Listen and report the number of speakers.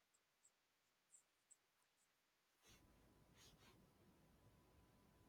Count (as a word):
zero